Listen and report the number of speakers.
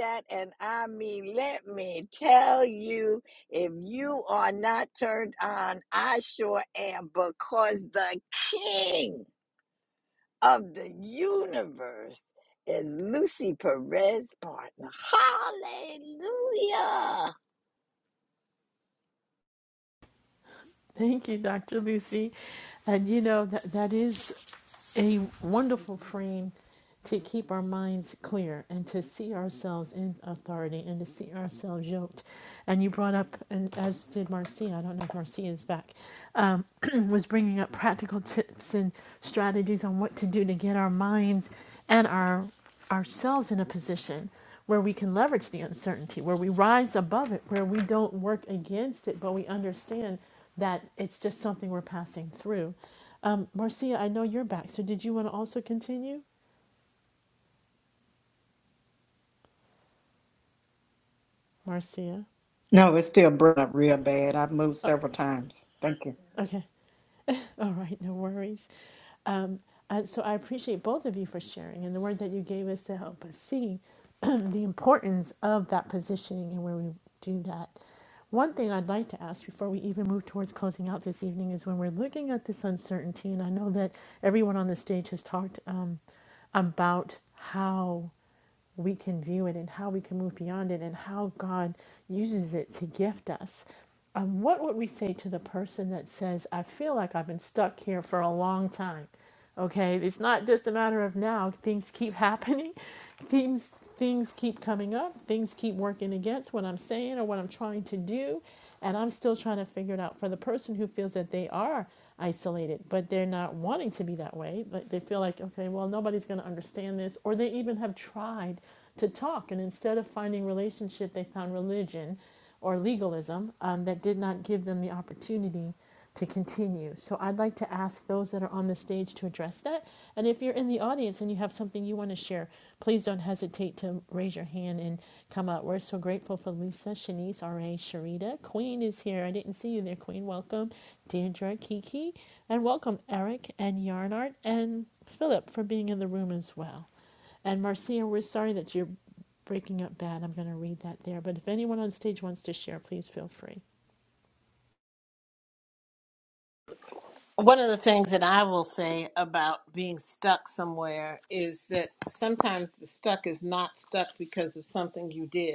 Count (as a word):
four